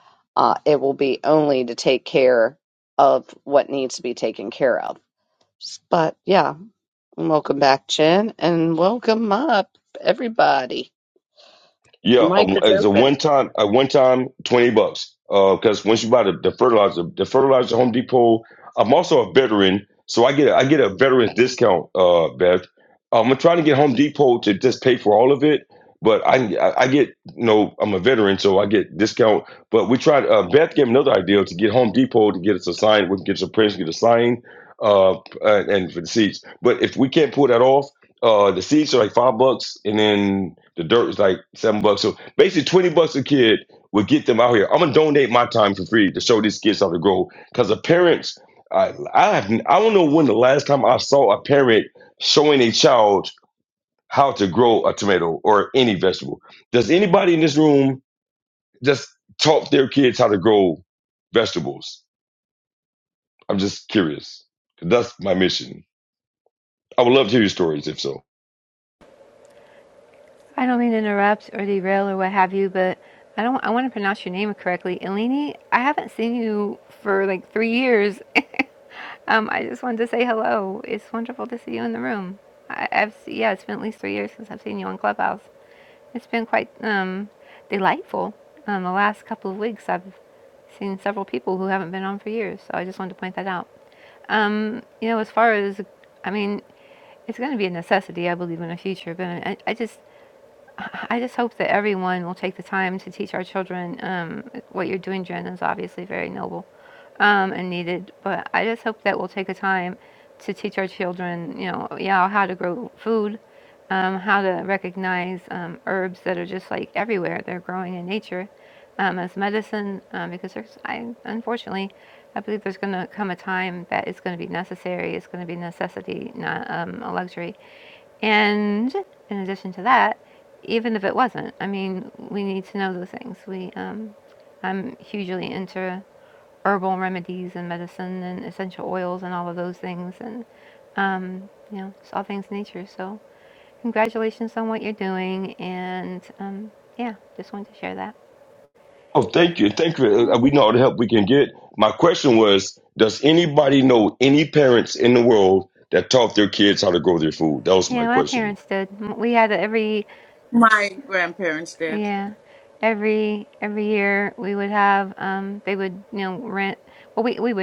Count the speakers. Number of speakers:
4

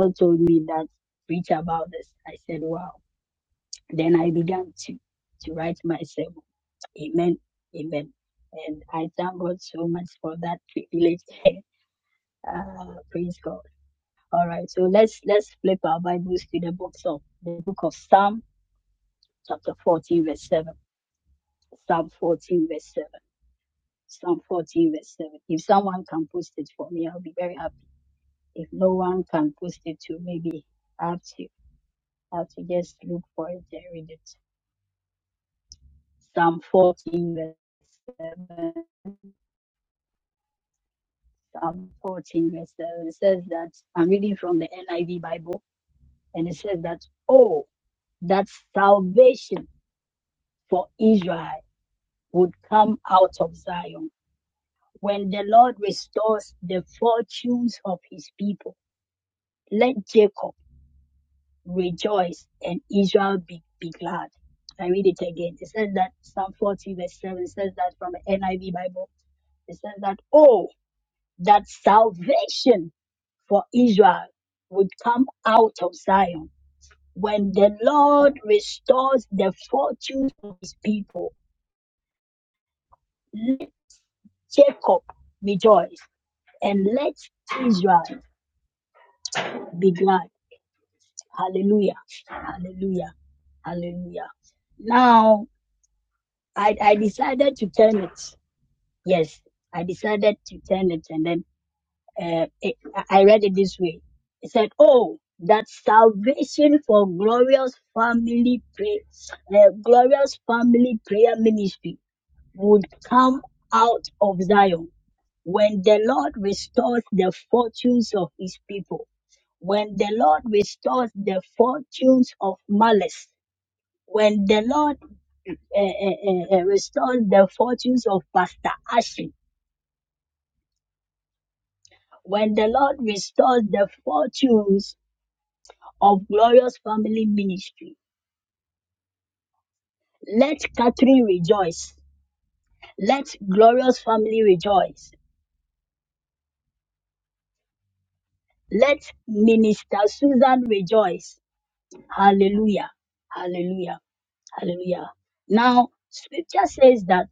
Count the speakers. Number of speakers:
1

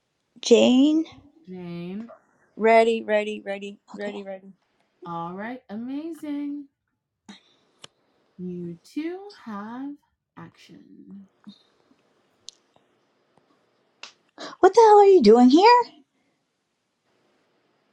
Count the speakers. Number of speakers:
3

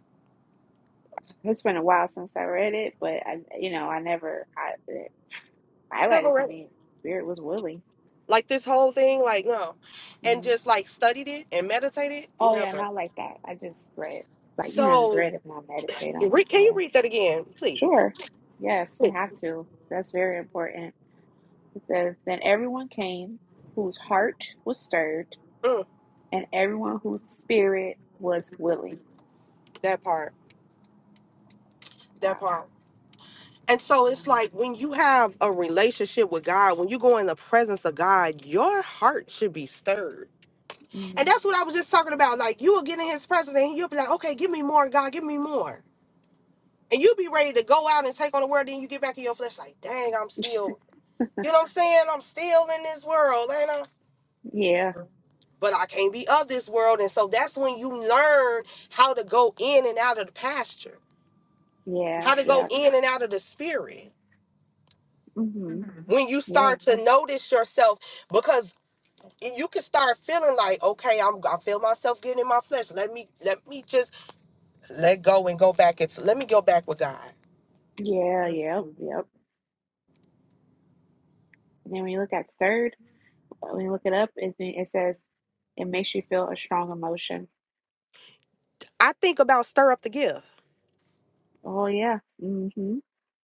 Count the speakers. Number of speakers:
2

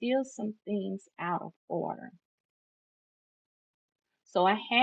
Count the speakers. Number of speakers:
1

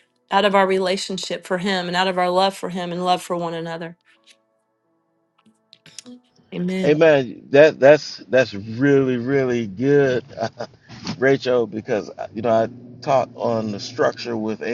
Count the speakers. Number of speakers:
2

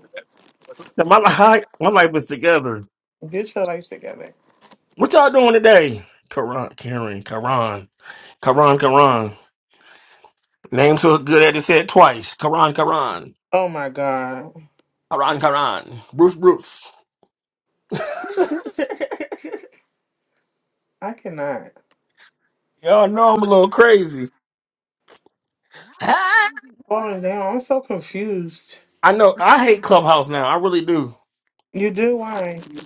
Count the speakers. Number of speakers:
2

